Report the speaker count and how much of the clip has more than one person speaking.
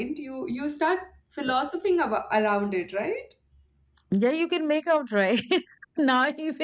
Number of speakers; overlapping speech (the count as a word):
two, no overlap